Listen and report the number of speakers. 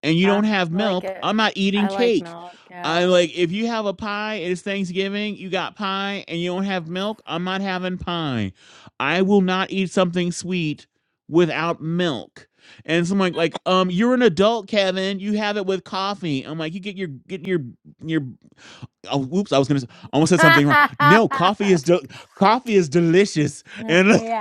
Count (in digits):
2